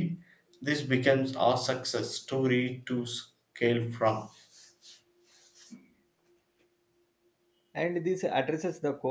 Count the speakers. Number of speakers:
2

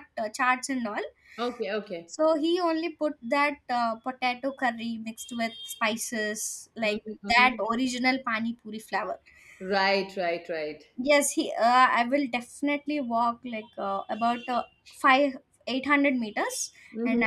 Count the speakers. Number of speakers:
2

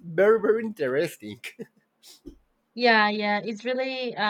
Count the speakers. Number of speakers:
2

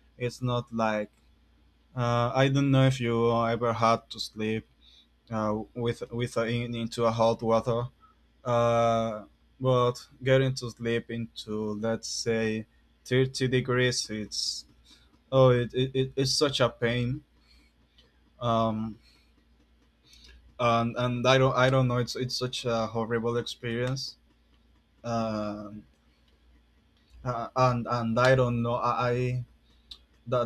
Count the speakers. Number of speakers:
1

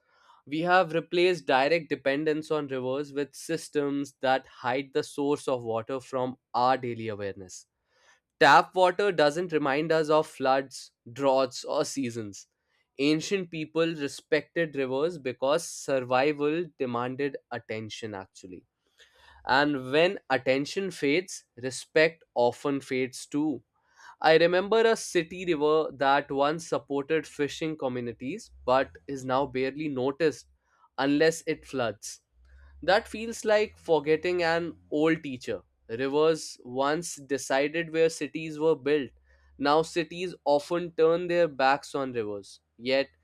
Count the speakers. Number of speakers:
1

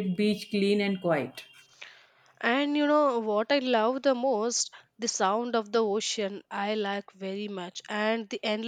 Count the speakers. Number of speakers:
2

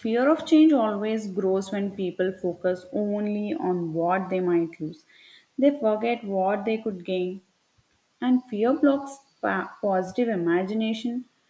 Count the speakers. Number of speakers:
1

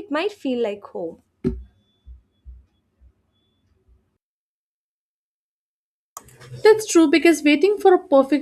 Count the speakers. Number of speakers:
2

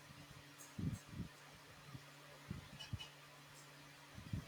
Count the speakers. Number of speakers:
0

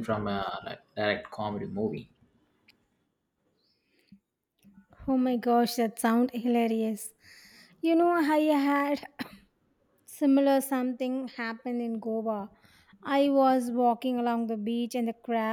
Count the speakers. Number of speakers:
2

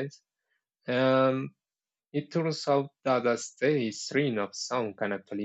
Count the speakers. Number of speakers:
1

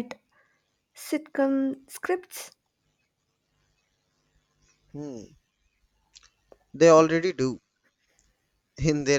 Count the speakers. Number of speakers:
2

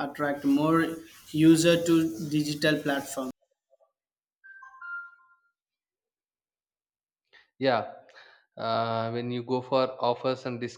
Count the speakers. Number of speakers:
2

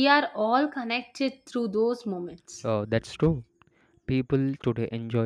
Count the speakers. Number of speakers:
2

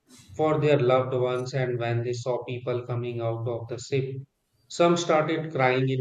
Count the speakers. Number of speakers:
1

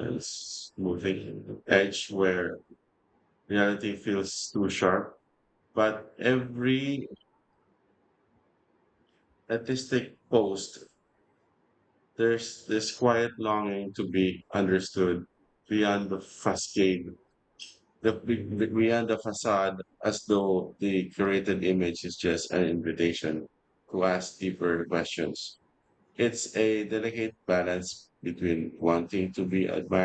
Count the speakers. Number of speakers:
1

